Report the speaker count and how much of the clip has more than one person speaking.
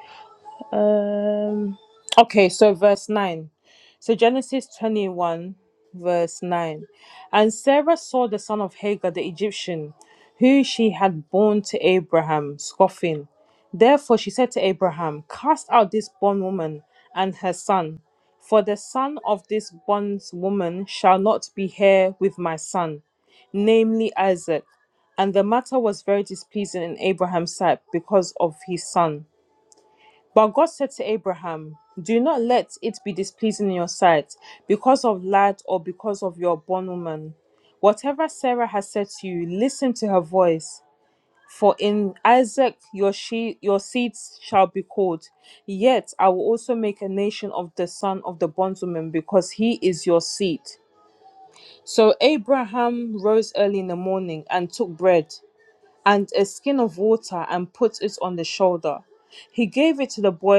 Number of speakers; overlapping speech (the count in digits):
1, no overlap